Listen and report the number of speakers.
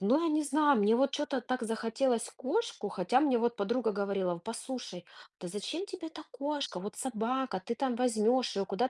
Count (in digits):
1